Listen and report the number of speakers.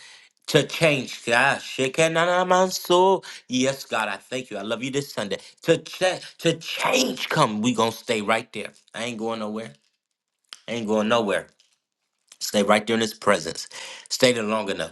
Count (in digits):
1